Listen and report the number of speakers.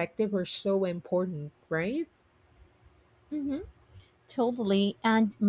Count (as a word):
two